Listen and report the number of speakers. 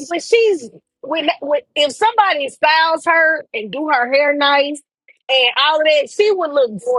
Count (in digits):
1